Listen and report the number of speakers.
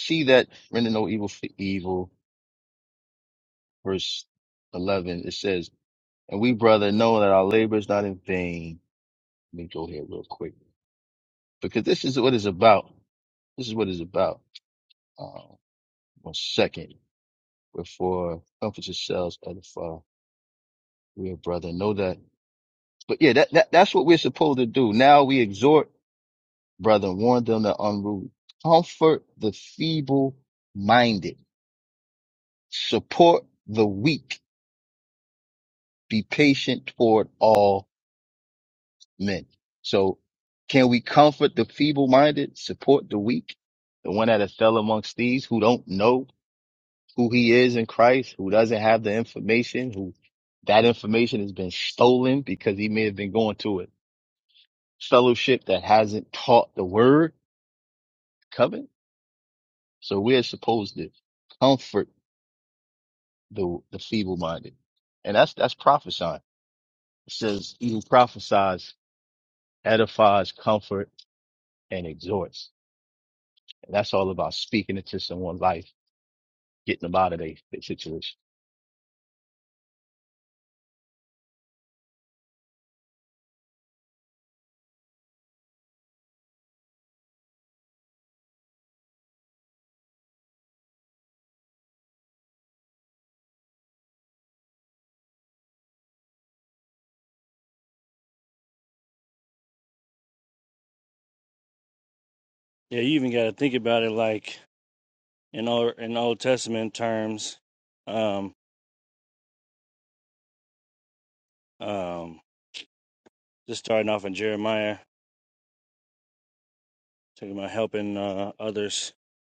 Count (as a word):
two